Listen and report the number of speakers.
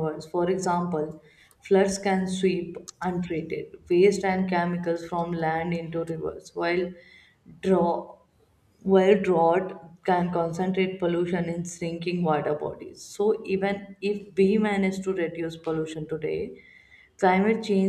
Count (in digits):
1